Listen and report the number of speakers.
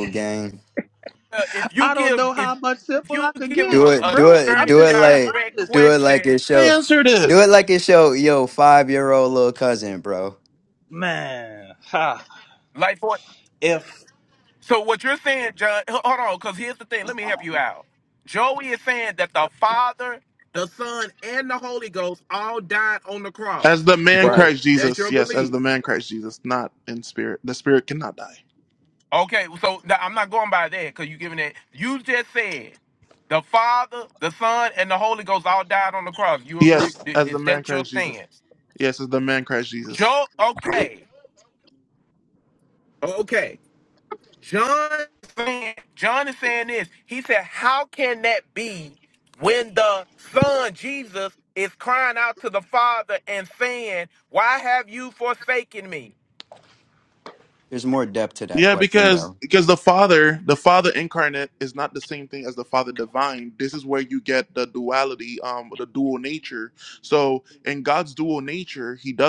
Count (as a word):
four